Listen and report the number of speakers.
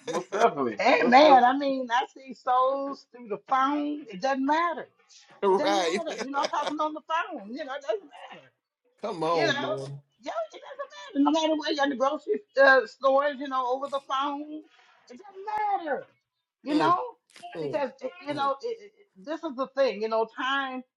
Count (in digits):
3